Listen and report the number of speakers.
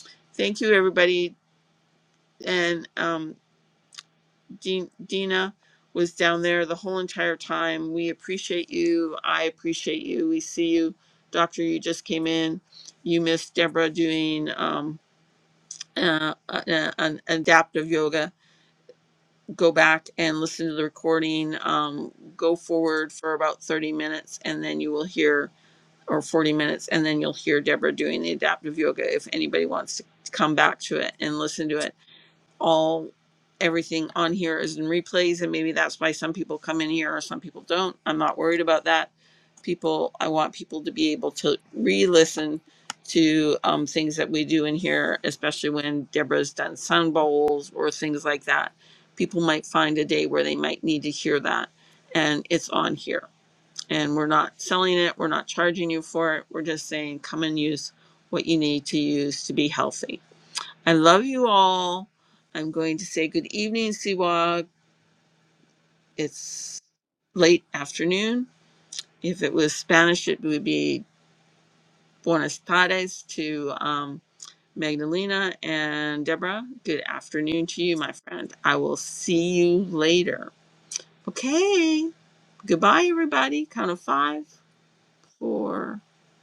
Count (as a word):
one